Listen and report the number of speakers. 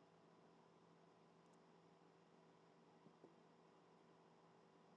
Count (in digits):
0